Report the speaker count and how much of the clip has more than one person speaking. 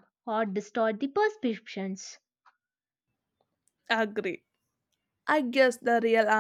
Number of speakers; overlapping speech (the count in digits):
2, no overlap